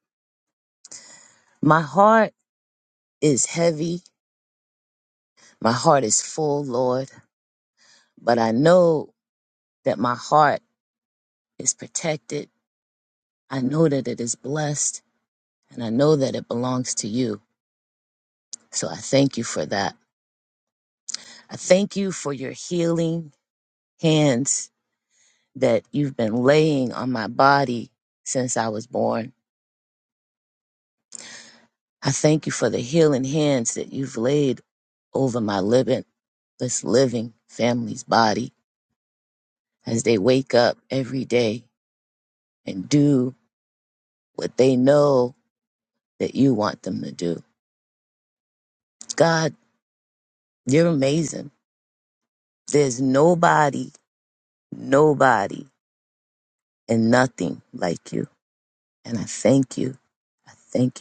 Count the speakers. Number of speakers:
one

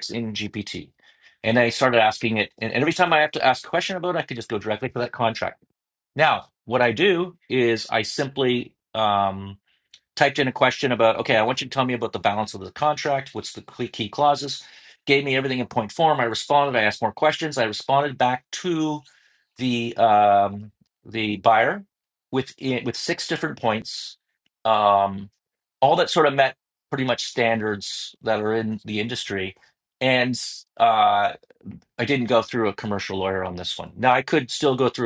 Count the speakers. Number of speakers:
one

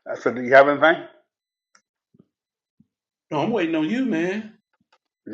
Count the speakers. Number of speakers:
two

